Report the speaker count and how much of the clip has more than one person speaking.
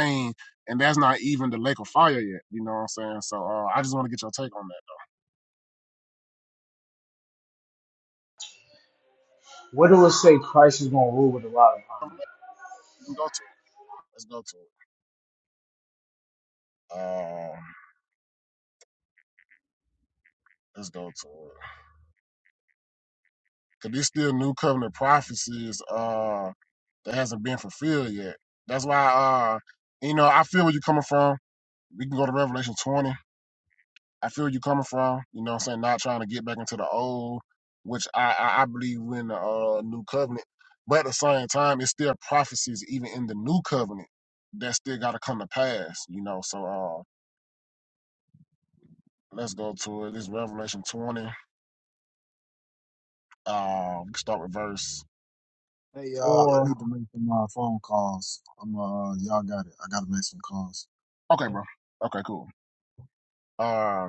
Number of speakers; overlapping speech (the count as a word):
three, about 1%